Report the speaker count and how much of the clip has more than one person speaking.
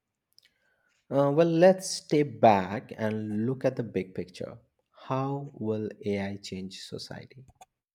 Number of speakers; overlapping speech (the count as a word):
one, no overlap